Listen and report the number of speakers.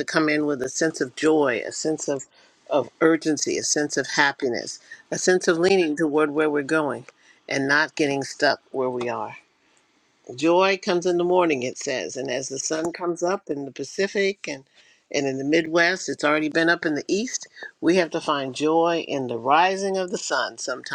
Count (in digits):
1